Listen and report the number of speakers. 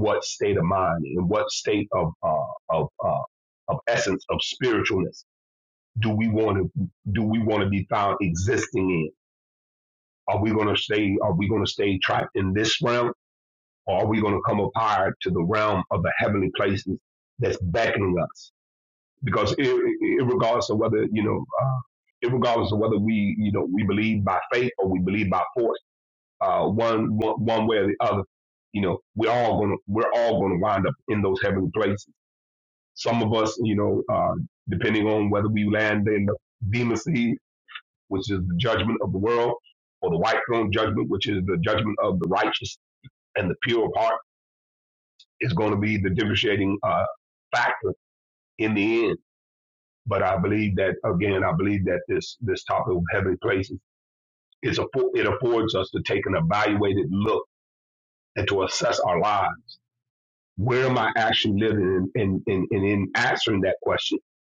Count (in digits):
1